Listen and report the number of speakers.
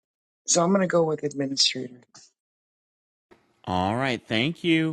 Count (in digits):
2